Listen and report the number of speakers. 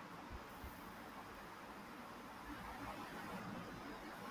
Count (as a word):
zero